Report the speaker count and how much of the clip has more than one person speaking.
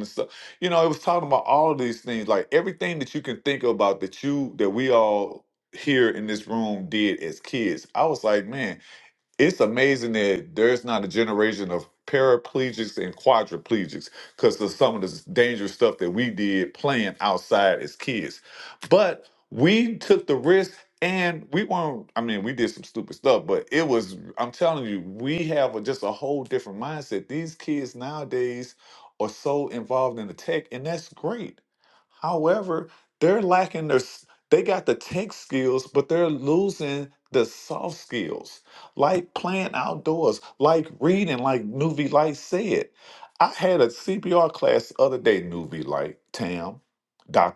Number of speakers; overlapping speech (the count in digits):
1, no overlap